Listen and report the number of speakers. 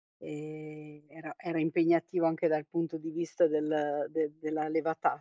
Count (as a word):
one